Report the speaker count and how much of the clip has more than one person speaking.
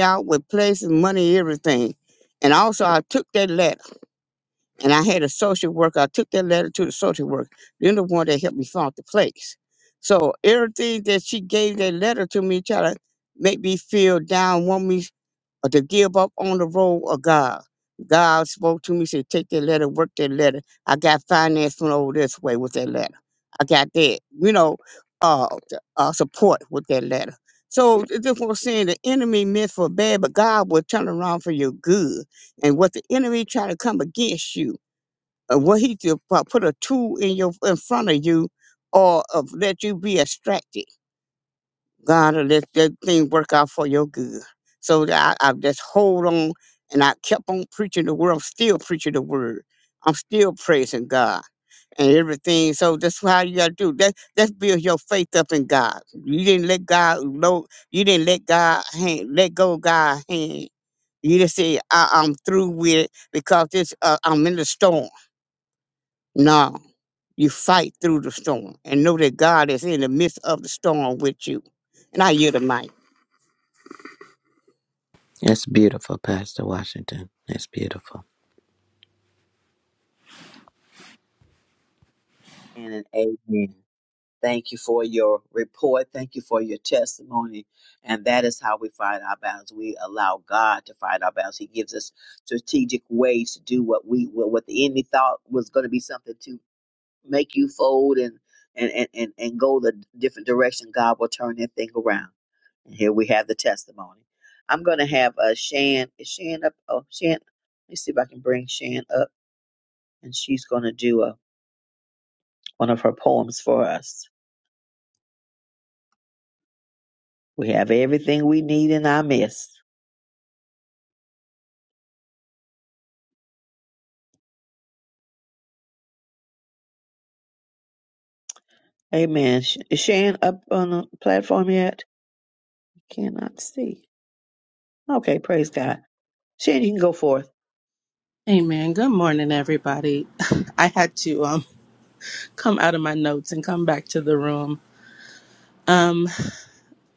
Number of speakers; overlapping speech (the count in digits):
4, no overlap